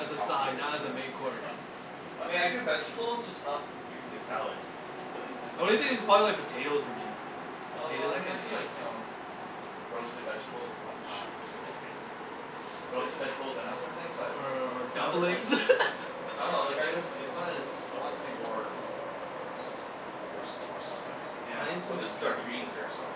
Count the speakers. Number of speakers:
3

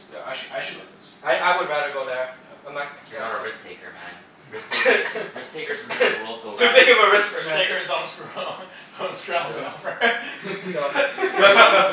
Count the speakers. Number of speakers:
4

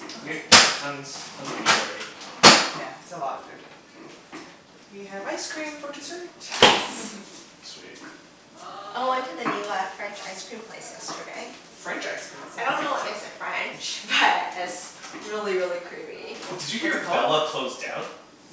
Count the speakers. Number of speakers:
4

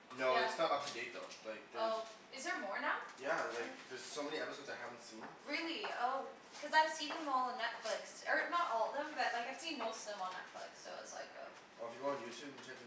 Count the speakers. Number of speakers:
2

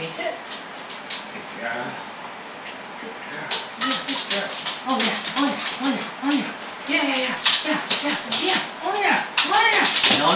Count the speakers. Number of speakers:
1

